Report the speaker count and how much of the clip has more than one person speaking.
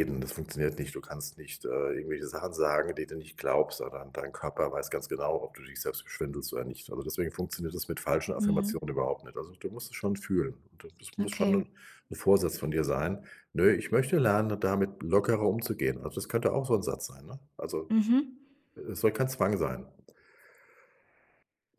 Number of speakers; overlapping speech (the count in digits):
2, about 4%